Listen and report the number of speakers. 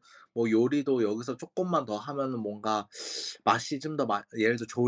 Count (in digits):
1